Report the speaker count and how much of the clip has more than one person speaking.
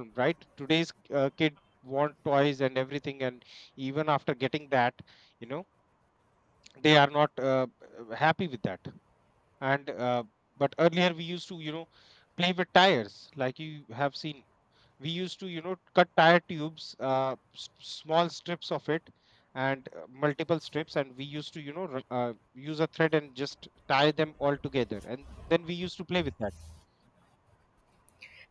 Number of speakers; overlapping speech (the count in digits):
1, no overlap